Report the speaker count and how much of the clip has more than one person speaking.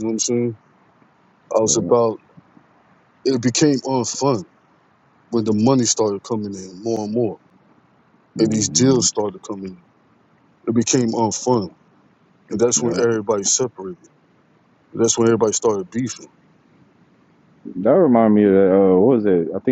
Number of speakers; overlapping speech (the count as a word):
two, about 6%